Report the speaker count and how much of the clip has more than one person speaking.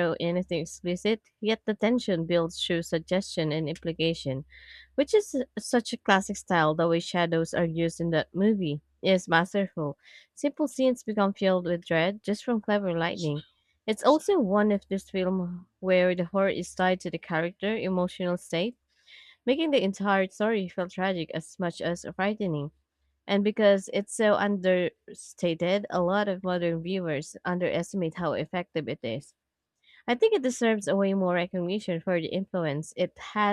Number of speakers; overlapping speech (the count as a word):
one, no overlap